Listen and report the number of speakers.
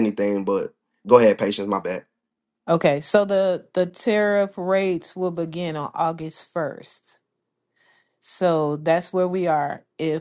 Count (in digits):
2